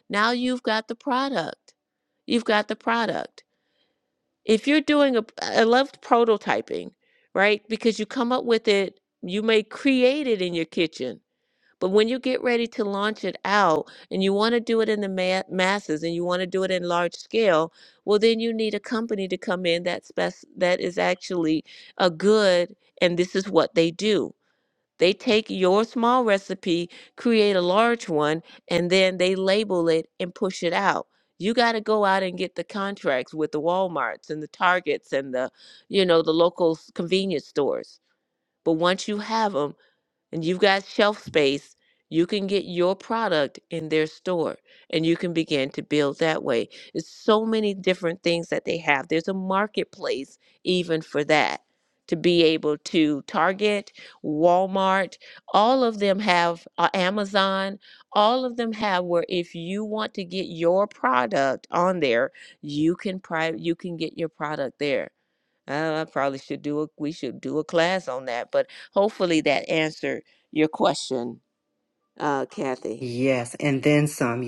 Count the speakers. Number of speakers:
two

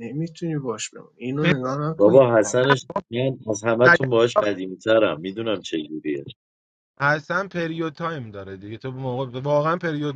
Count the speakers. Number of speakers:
three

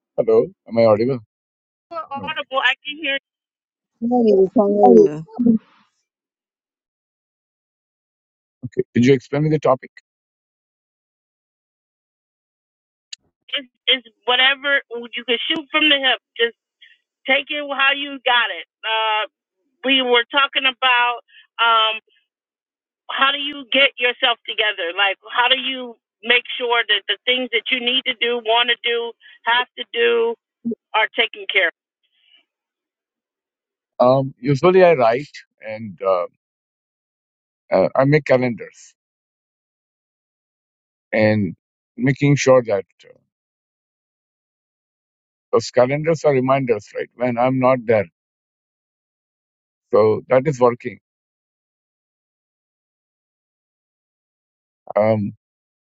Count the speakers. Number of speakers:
three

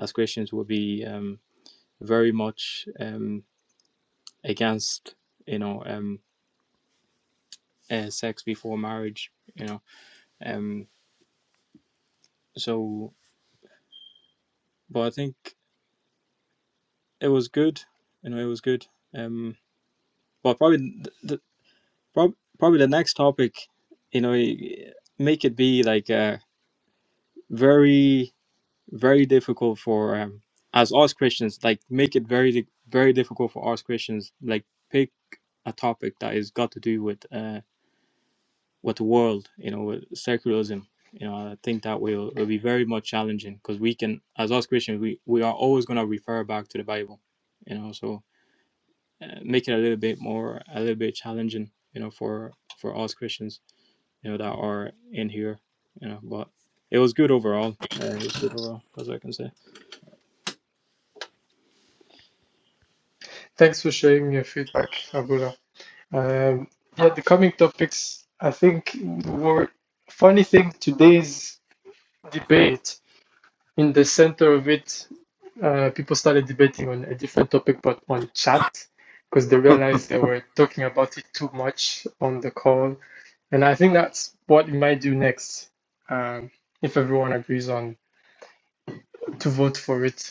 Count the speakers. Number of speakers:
two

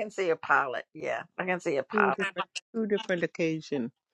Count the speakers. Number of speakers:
two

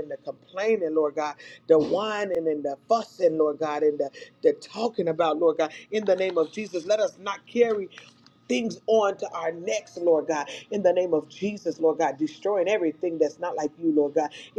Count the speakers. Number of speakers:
one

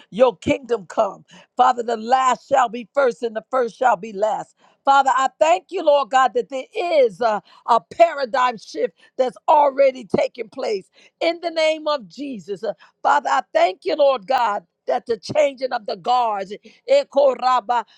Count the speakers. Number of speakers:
one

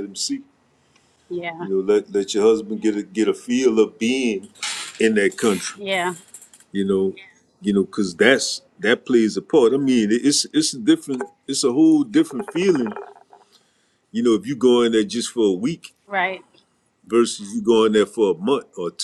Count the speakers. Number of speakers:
two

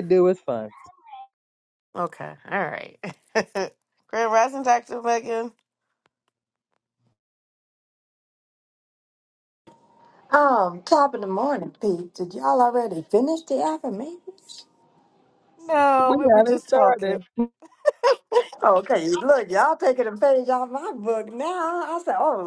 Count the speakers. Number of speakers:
three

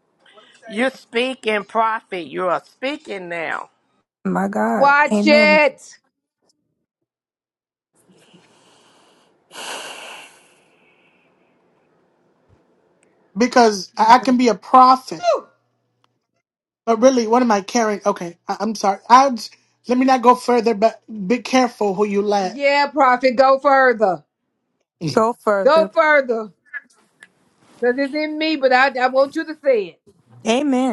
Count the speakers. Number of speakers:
four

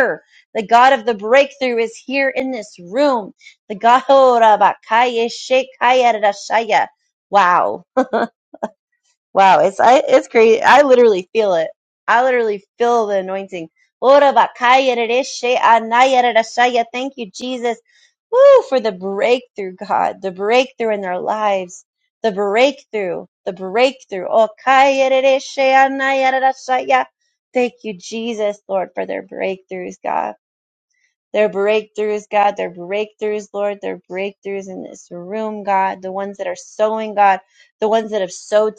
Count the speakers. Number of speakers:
one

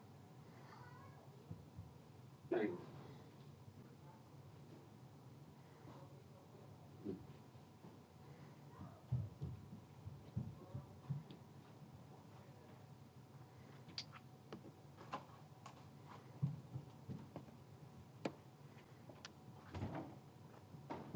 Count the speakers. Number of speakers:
zero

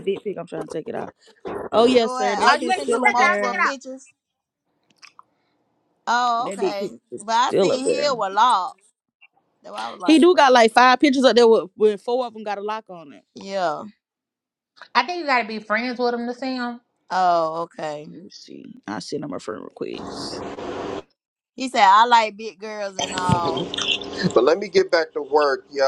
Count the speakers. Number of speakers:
four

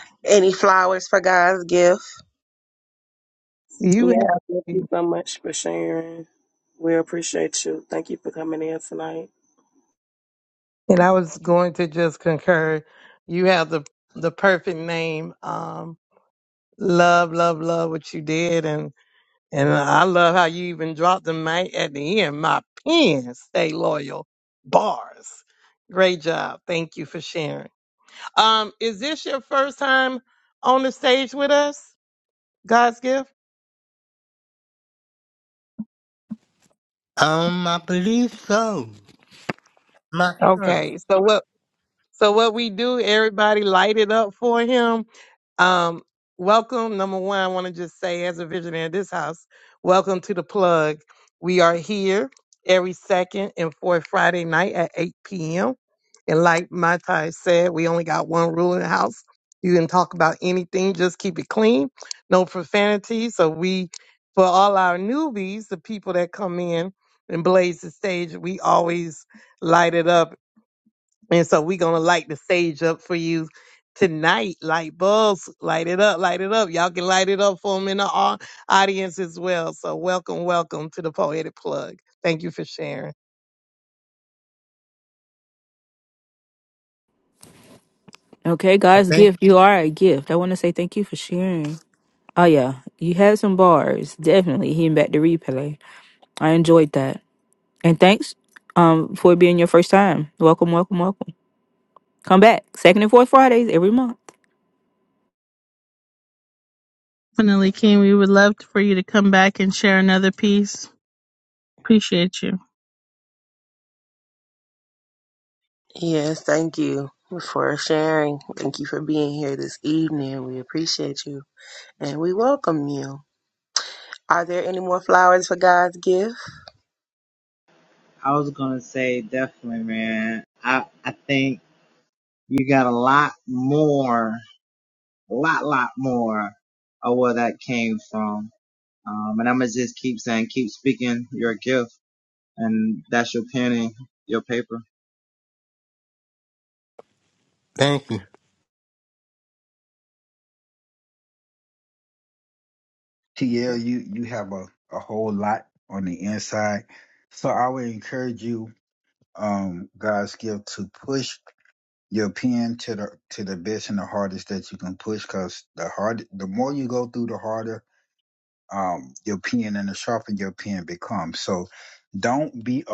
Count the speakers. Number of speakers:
eight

